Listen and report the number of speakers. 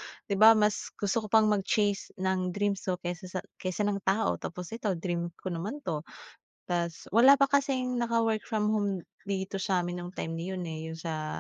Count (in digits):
1